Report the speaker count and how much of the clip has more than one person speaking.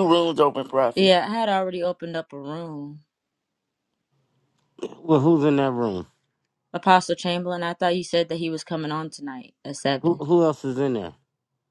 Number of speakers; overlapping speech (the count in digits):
3, about 2%